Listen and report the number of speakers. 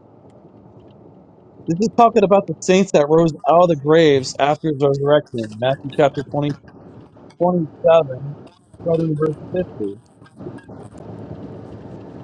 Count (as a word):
one